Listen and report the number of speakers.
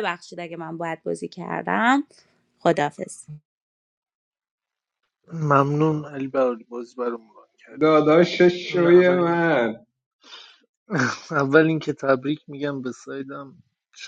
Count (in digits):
3